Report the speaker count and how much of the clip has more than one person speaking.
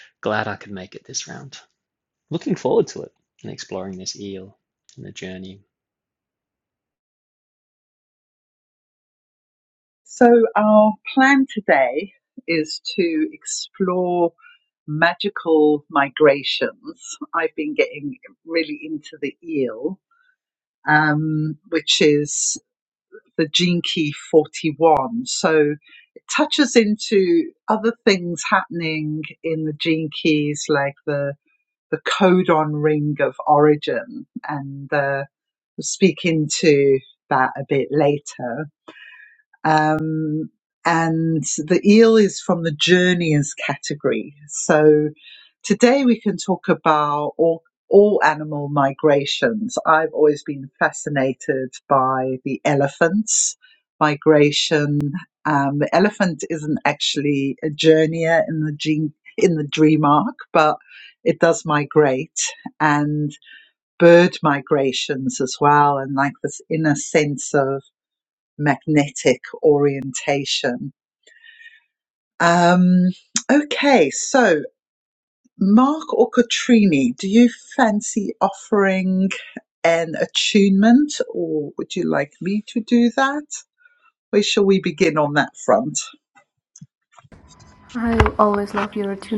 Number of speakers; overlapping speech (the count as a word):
three, no overlap